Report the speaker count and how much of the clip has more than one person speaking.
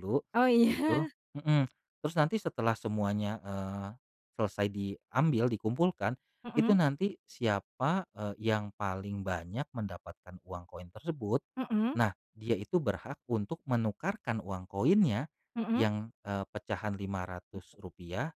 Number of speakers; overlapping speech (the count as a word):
two, about 4%